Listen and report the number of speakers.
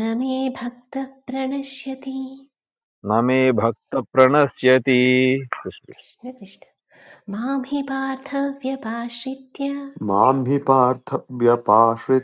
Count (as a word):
three